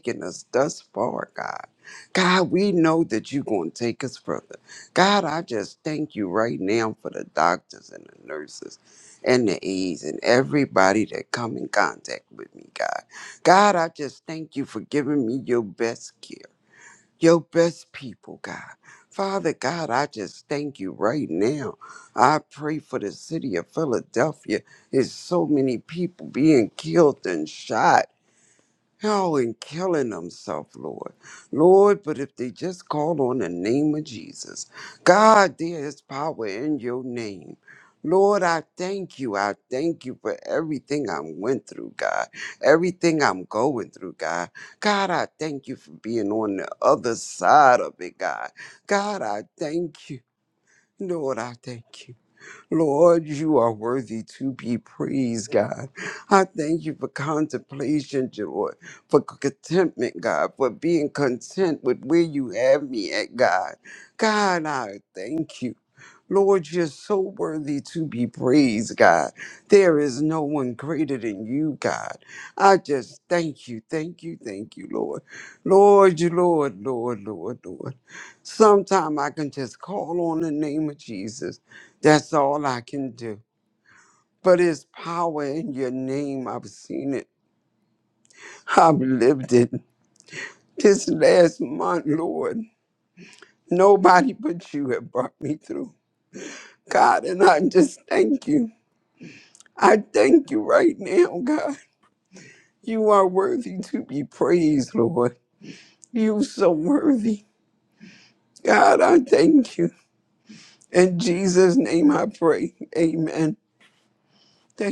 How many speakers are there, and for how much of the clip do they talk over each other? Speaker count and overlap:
1, no overlap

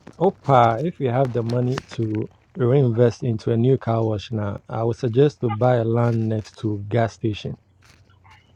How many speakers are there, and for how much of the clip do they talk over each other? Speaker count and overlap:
1, no overlap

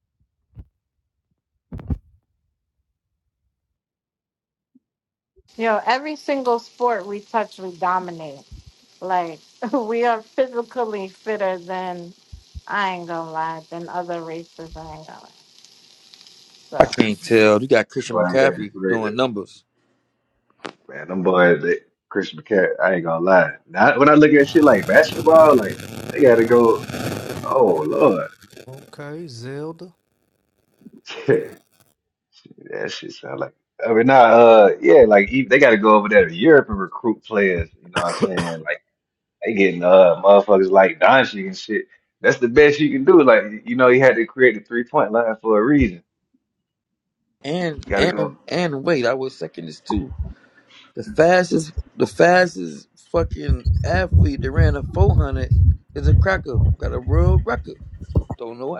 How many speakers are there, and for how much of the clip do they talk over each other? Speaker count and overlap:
4, about 3%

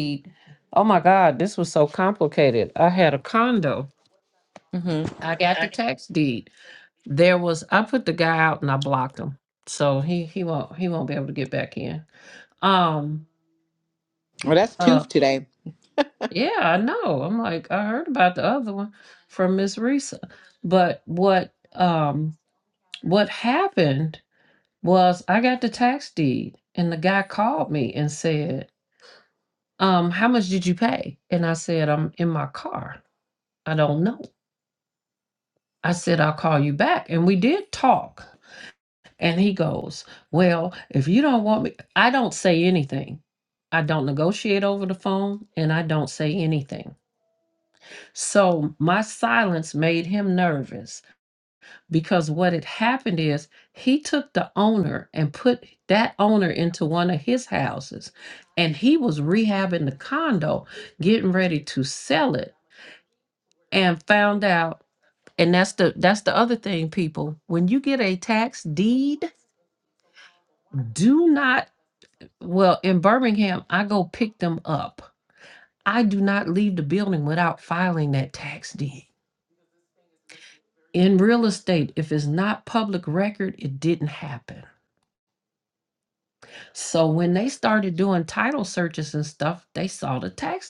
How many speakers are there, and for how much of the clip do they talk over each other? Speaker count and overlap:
2, under 1%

